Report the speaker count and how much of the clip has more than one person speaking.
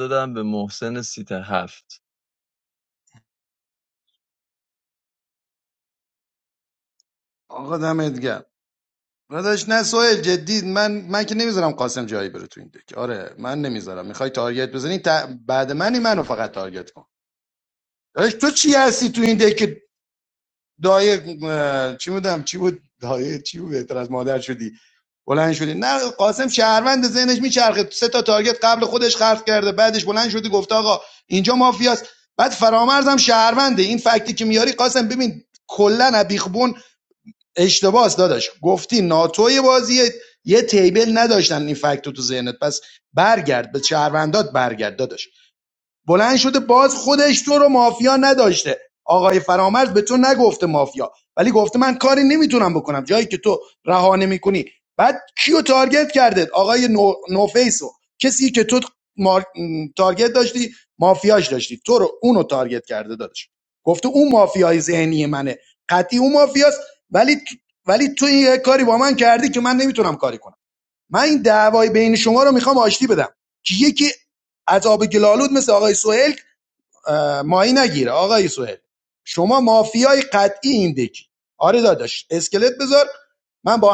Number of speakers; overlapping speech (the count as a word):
two, no overlap